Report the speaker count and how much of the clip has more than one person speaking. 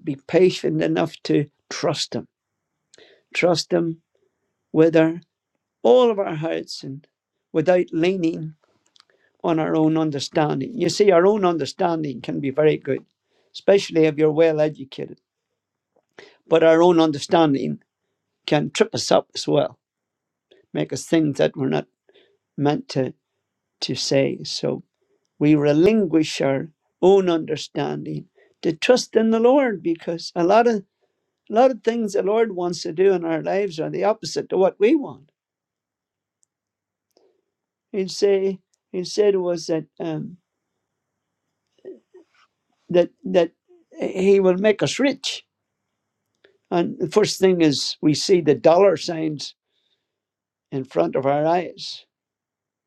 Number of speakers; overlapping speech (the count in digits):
1, no overlap